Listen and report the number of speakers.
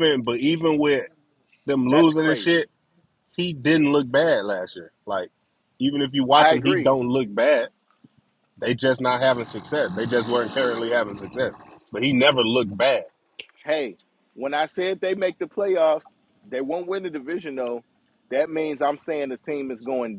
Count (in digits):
2